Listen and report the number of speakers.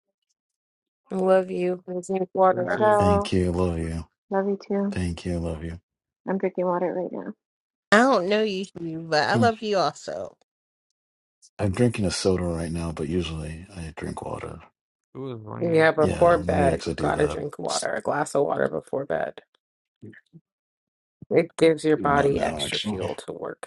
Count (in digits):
5